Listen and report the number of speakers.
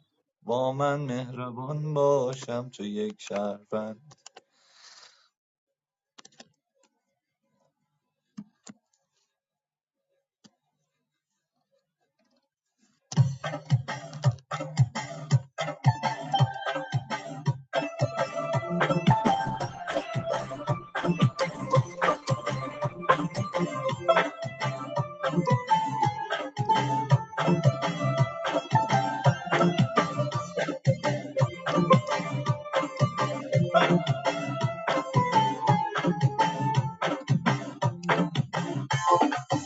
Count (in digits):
1